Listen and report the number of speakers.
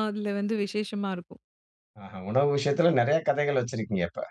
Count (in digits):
2